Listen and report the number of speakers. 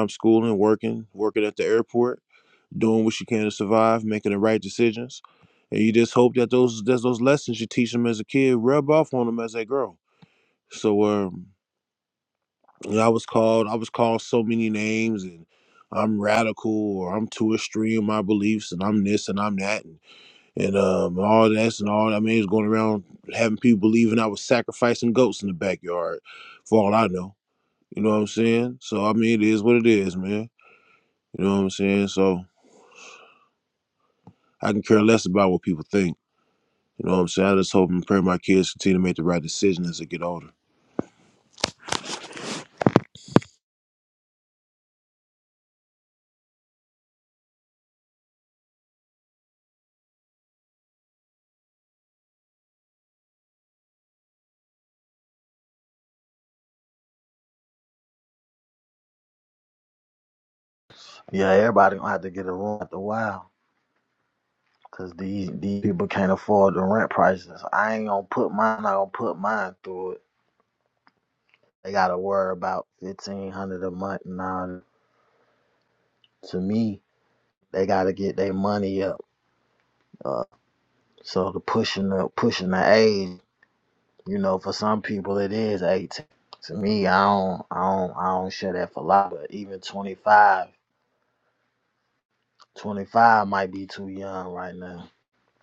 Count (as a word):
two